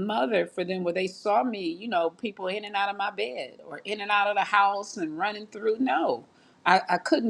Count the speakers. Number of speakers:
1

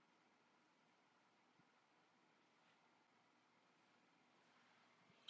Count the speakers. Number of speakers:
0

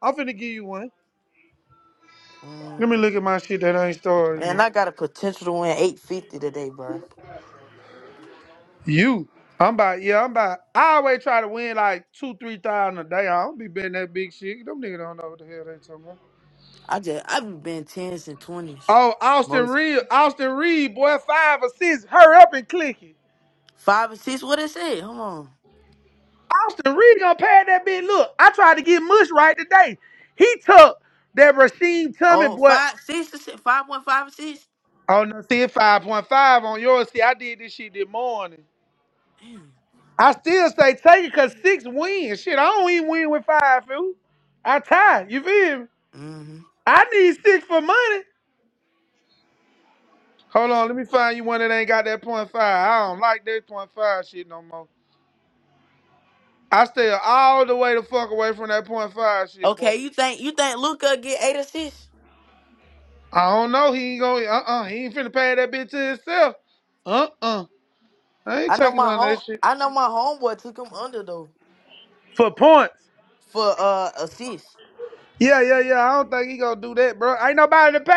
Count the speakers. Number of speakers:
2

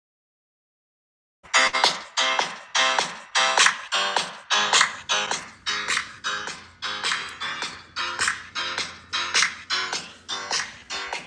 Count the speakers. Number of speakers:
0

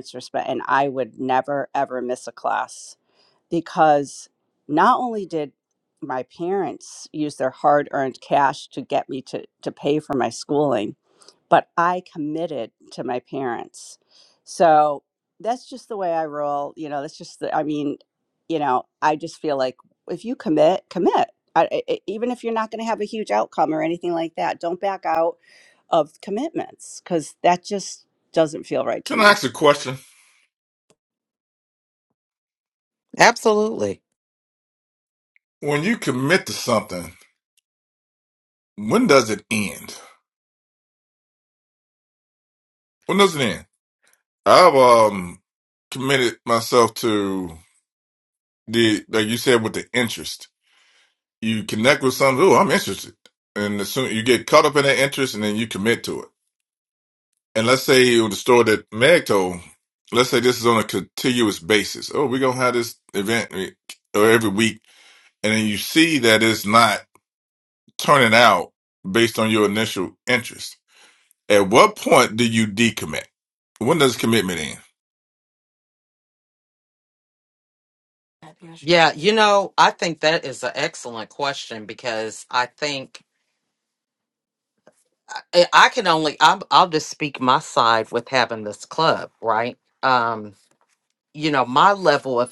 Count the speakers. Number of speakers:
3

